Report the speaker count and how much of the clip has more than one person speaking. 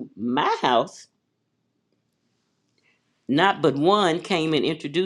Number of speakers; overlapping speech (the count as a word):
one, no overlap